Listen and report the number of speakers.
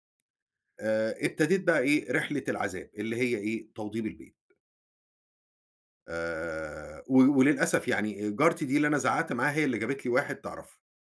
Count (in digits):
1